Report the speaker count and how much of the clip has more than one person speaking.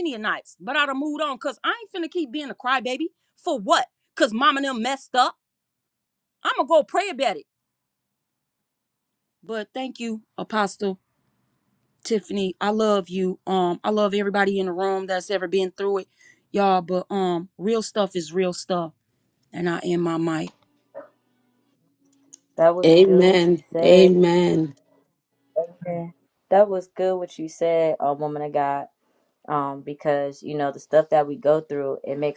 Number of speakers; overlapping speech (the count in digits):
3, about 4%